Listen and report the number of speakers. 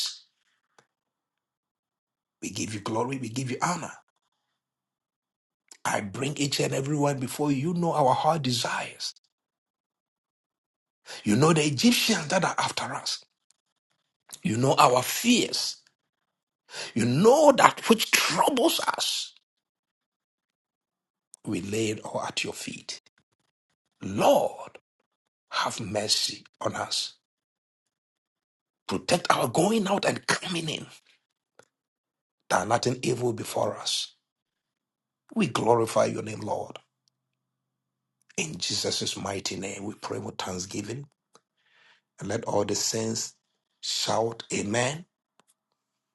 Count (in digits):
1